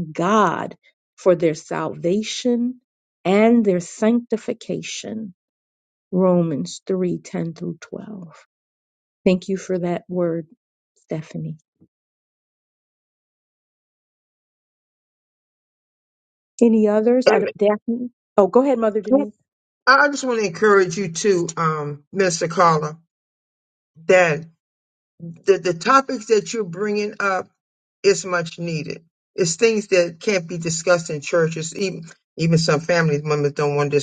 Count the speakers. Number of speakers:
2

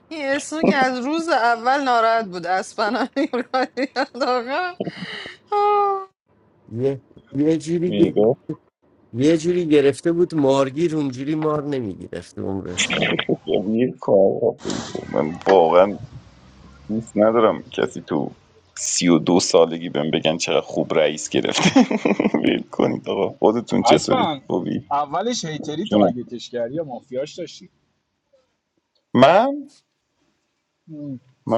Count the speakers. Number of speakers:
4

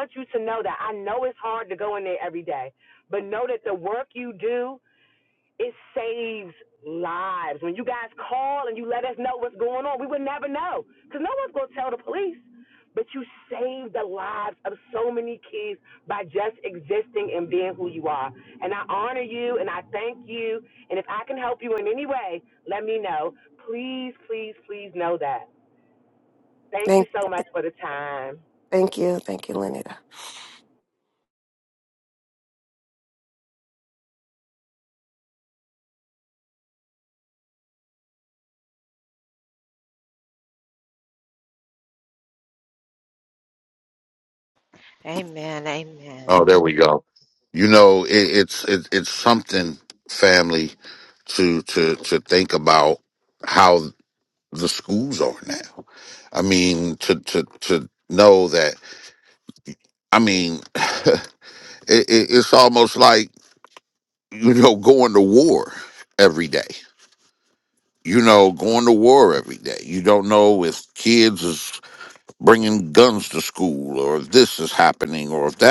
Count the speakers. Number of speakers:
4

